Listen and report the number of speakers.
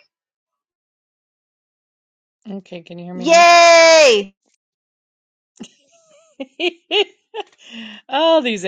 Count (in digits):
2